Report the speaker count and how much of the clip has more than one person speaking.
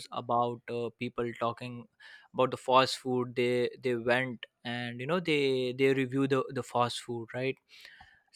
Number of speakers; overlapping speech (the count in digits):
1, no overlap